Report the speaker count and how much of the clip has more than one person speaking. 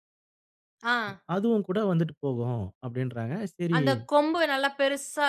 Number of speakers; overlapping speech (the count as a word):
two, about 2%